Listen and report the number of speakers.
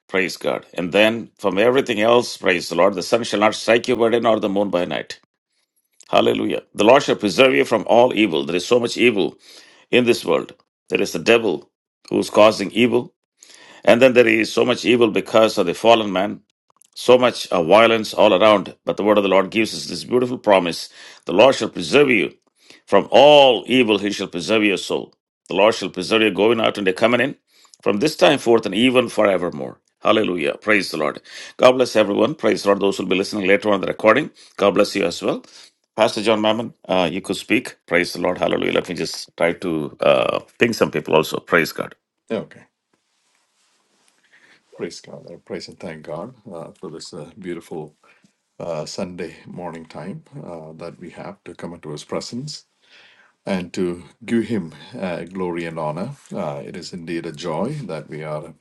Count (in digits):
2